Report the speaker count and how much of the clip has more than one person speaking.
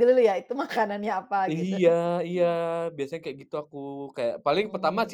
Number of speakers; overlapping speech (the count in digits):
2, about 16%